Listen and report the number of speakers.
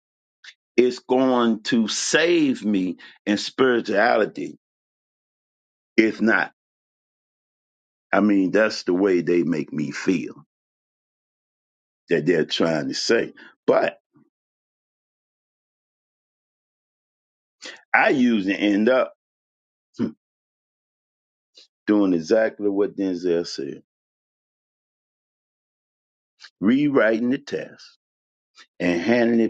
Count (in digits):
1